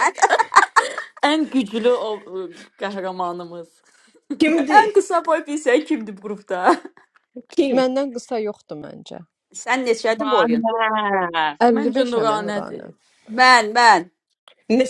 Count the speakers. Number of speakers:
5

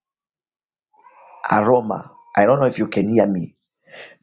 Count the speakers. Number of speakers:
1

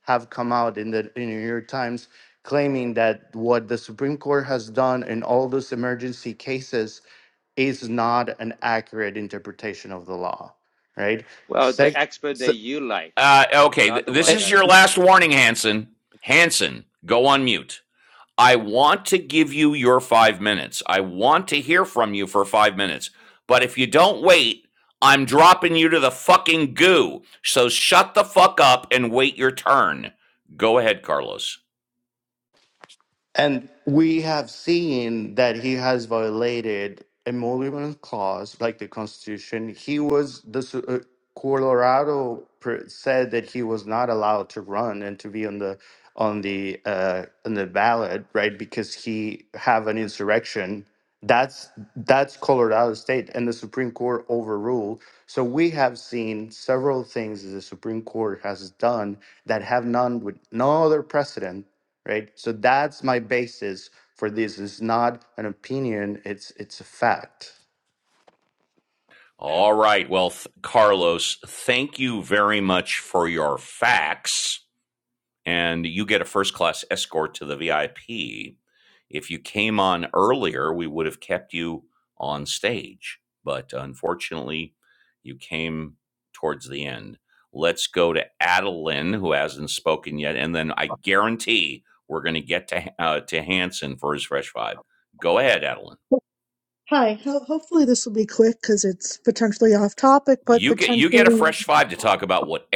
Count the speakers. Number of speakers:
4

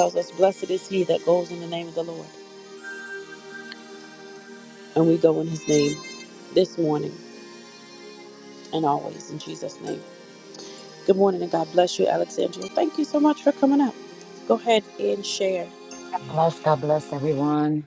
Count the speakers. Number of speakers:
2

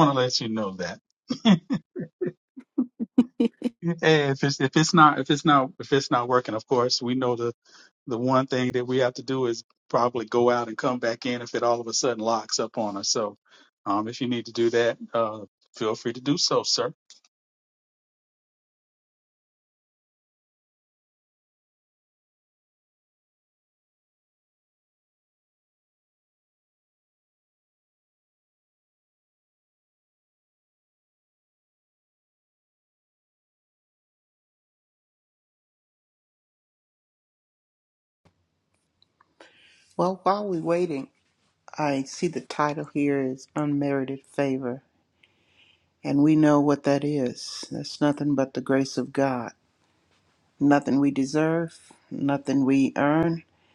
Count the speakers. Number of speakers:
2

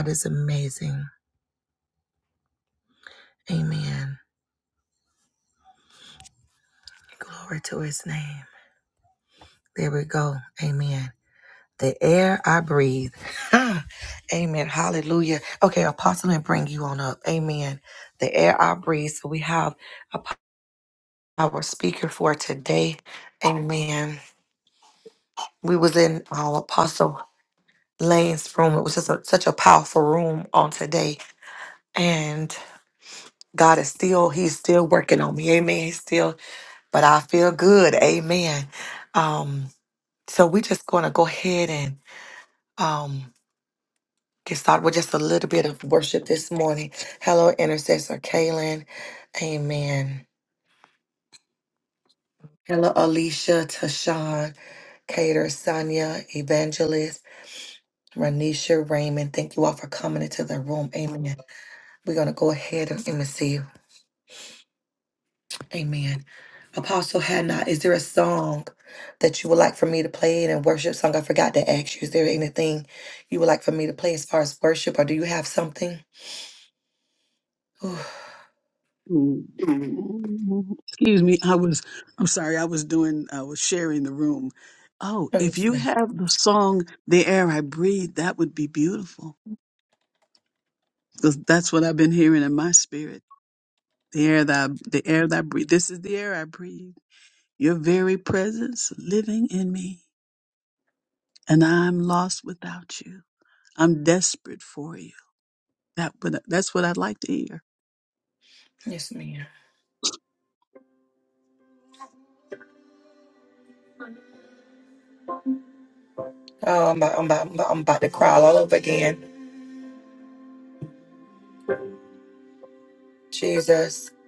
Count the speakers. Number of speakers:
2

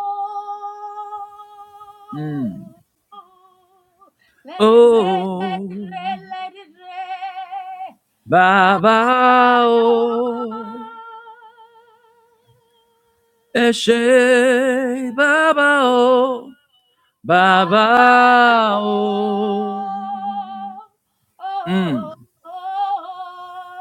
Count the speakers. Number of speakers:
2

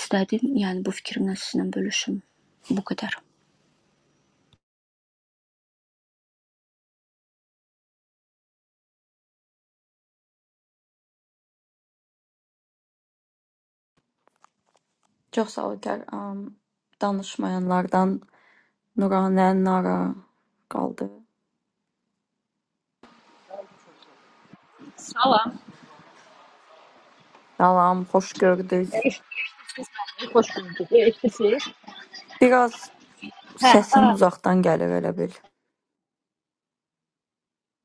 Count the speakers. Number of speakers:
3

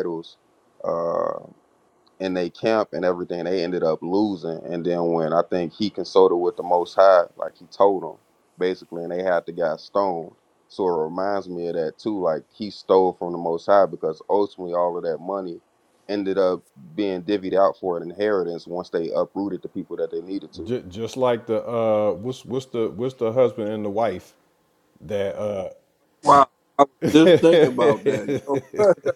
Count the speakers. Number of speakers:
3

